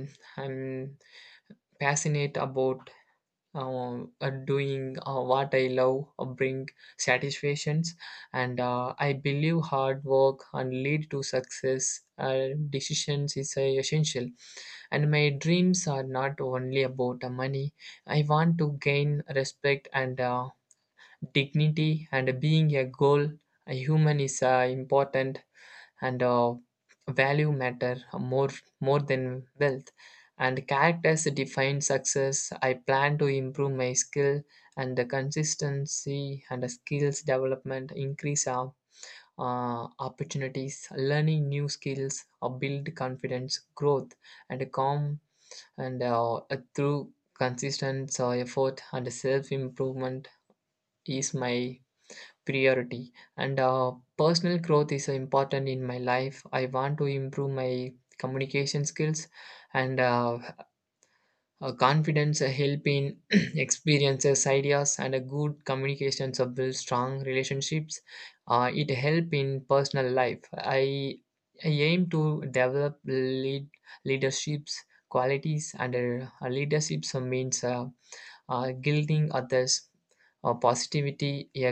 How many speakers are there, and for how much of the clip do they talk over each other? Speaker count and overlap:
1, no overlap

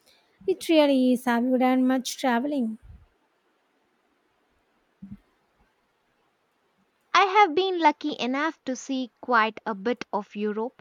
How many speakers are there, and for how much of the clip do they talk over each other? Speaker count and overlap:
2, no overlap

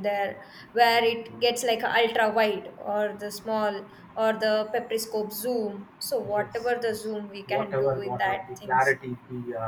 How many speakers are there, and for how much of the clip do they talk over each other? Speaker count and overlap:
2, about 14%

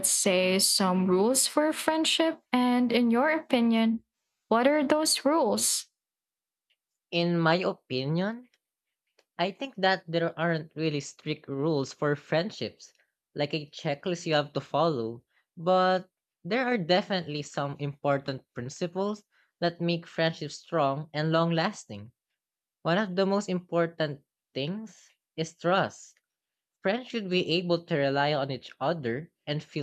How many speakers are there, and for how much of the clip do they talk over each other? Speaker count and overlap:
2, no overlap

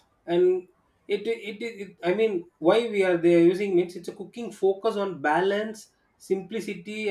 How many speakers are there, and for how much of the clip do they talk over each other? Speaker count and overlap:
1, no overlap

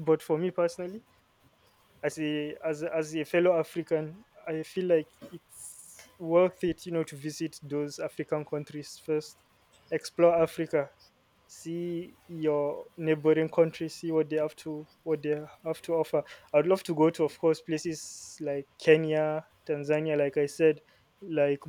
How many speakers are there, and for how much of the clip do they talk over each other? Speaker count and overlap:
1, no overlap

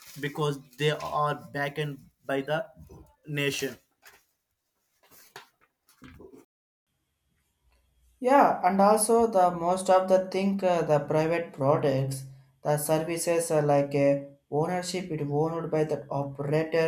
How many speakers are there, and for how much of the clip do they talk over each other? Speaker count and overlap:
2, no overlap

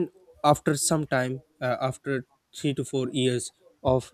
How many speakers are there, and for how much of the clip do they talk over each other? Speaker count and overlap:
1, no overlap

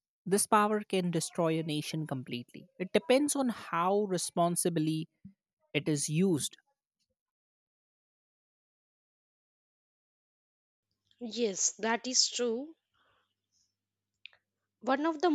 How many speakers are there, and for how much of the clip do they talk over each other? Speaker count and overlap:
2, no overlap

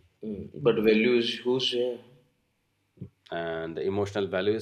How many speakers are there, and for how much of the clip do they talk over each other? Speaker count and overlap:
2, no overlap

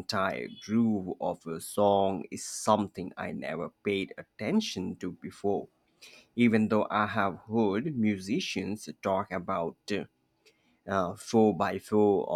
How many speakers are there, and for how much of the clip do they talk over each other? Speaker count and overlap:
1, no overlap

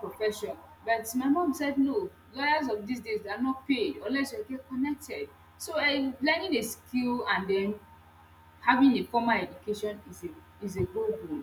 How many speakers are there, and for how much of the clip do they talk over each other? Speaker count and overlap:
1, no overlap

